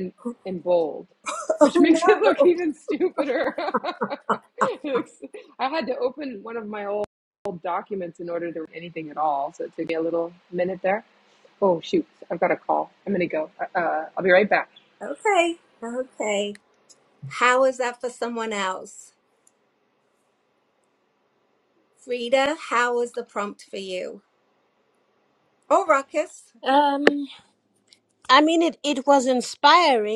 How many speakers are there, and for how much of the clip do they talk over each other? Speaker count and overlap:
three, about 2%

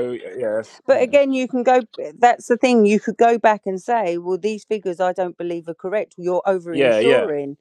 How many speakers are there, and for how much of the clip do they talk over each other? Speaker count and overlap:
two, about 11%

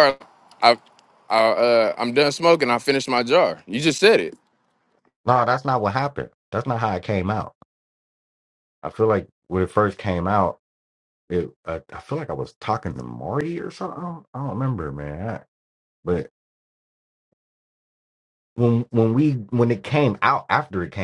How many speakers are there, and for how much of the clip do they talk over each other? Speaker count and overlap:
two, no overlap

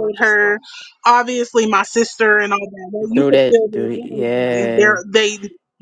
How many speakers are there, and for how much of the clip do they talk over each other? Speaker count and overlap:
two, about 22%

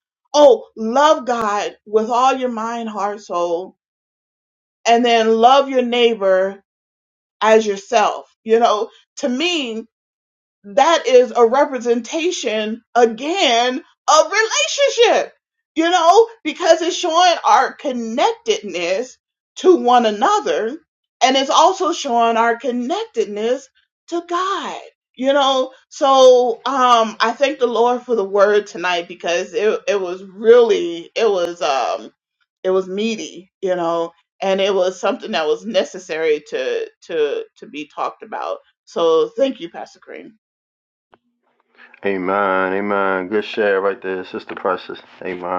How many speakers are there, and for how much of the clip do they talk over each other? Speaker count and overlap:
two, no overlap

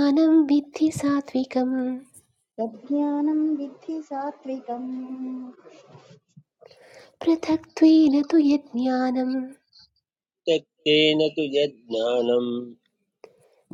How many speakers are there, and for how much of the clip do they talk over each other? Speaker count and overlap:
three, no overlap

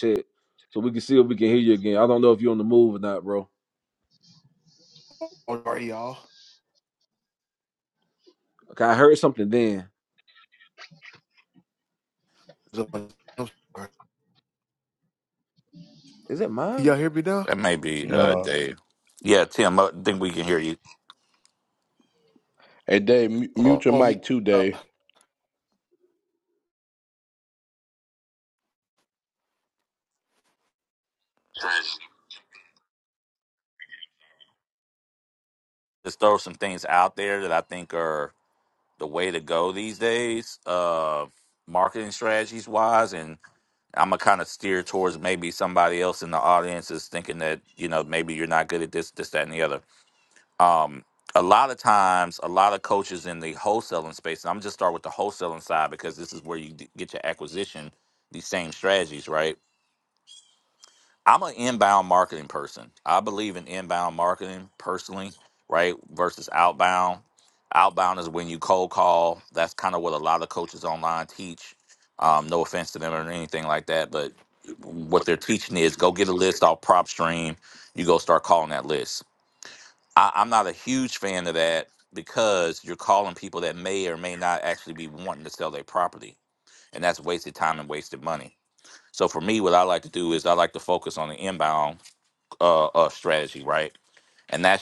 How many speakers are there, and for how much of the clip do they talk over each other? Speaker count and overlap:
four, about 1%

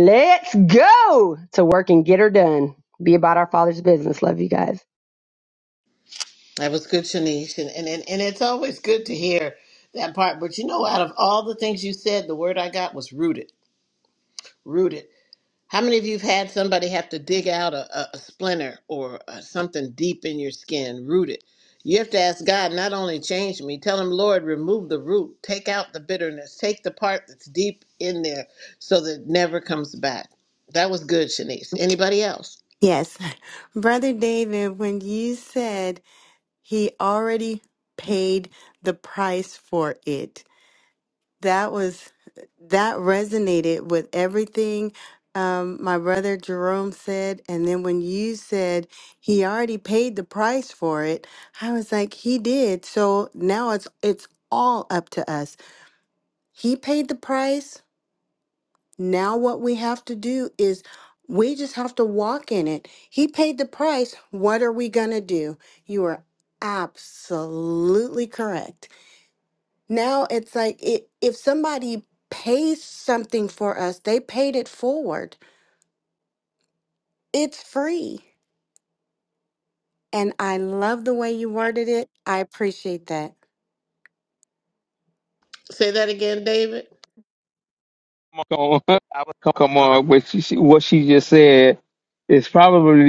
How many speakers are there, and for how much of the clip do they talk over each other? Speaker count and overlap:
four, no overlap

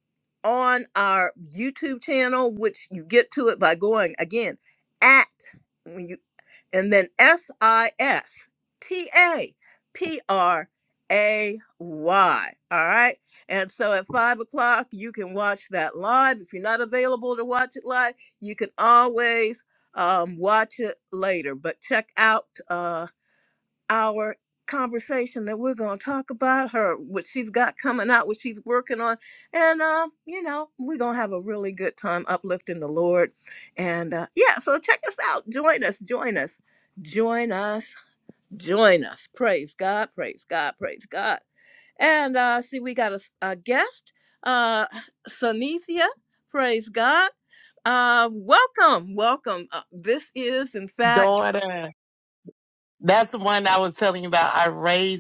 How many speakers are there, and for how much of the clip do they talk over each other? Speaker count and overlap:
two, about 1%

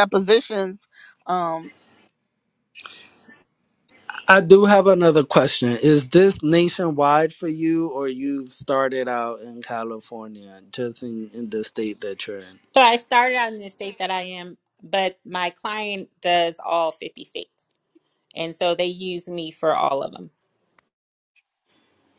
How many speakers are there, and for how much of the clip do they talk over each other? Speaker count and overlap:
three, no overlap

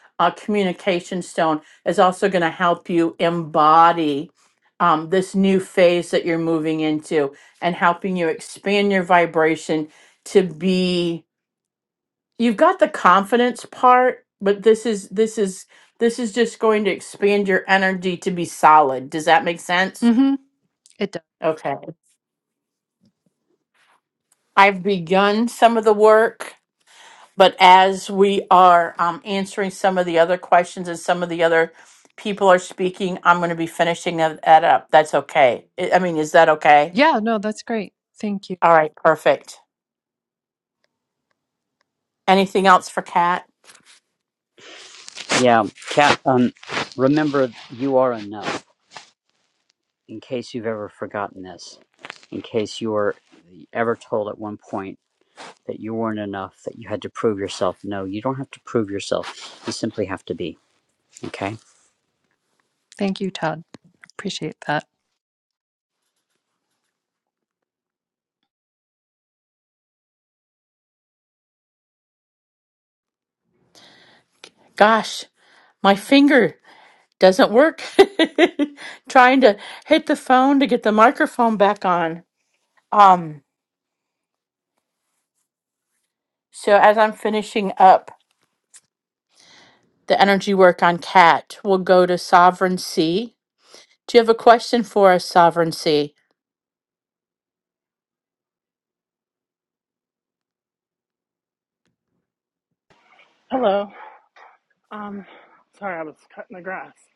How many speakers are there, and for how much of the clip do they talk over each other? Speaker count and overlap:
four, no overlap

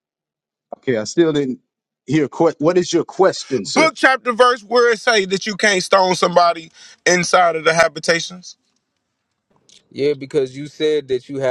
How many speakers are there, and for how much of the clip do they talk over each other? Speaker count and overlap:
three, about 3%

